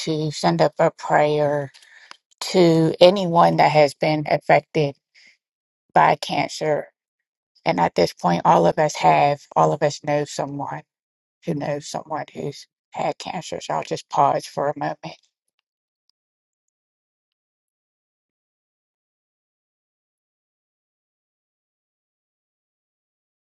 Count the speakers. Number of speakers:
one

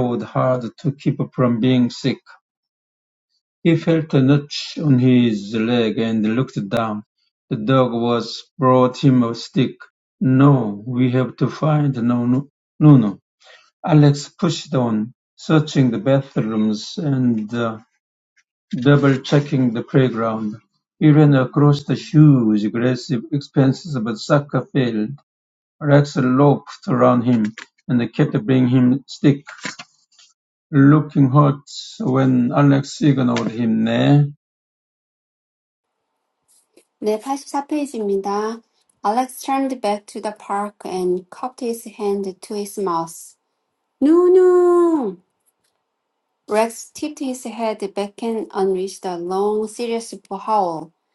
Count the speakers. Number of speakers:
two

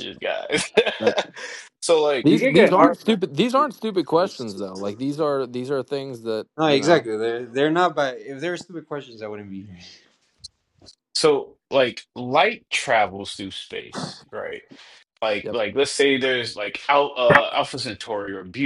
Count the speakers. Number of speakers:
three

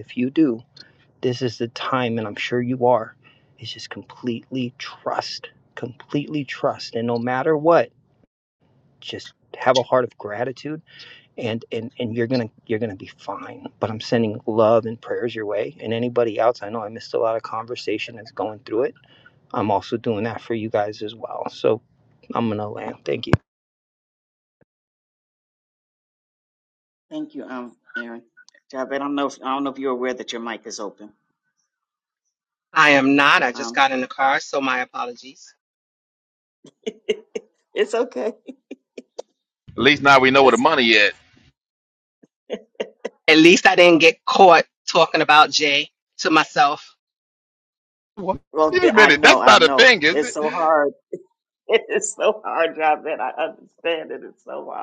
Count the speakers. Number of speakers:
four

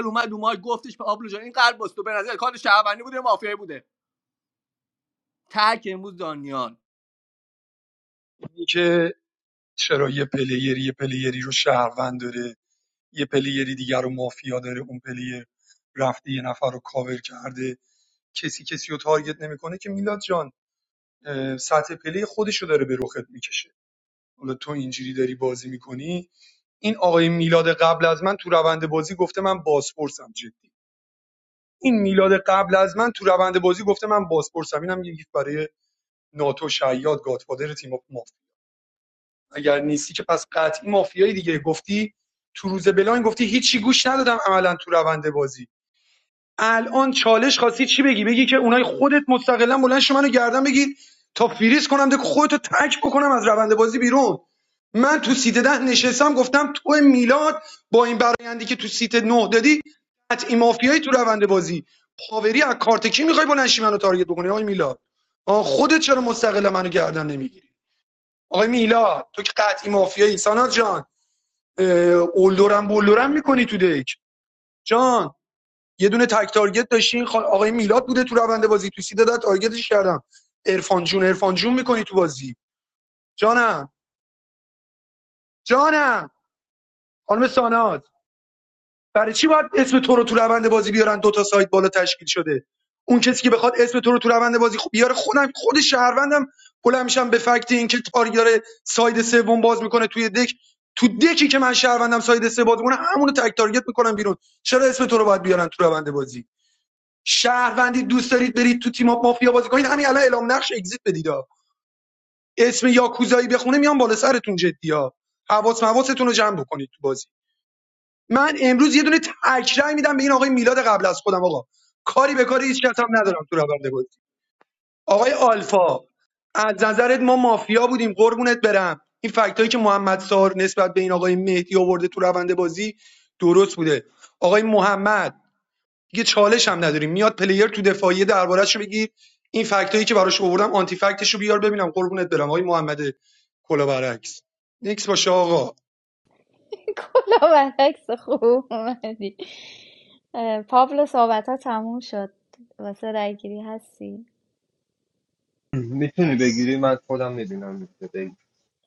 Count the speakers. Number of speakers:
four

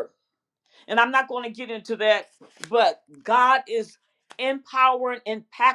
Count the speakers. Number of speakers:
one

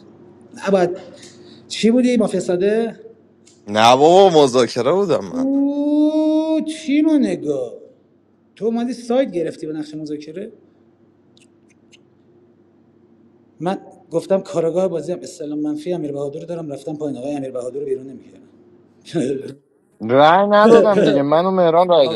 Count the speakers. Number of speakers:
three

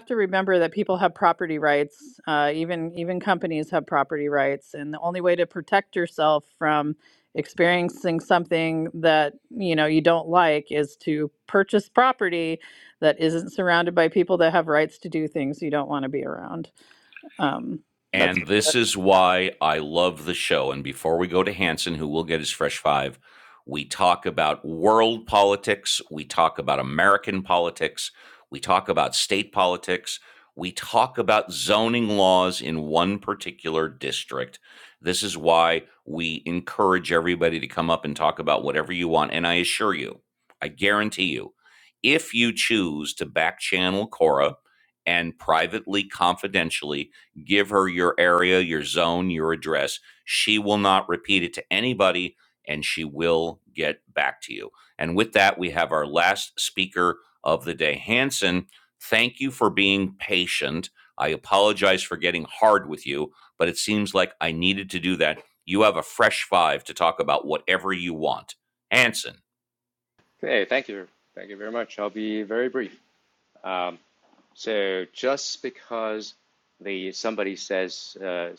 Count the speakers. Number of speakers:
three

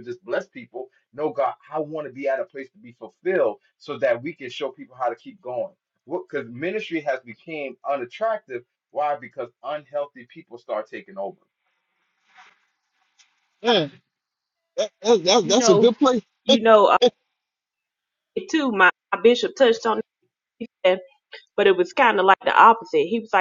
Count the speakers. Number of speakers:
three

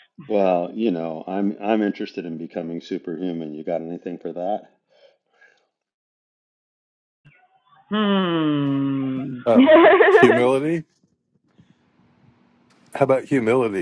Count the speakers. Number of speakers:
three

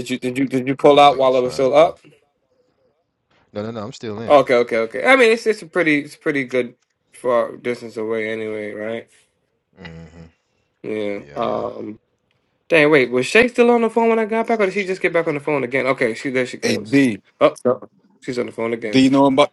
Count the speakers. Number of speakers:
three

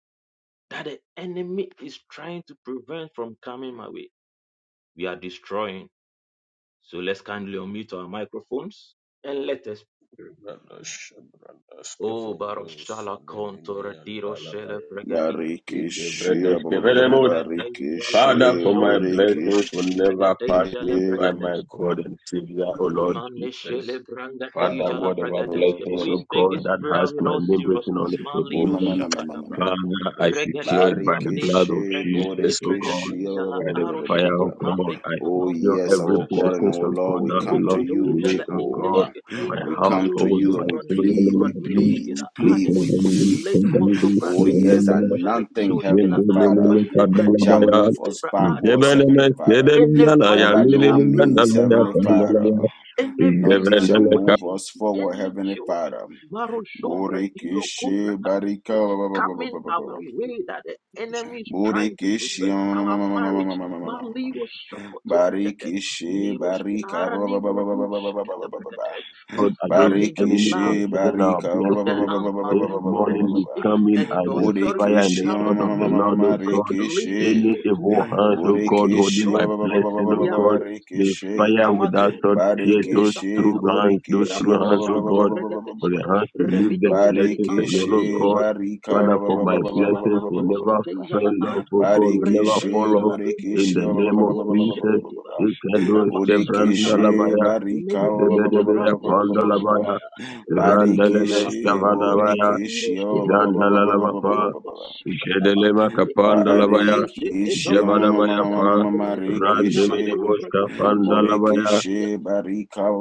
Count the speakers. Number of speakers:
three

